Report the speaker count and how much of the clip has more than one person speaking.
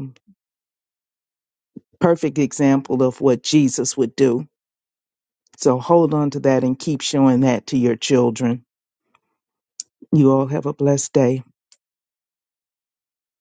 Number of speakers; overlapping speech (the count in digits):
1, no overlap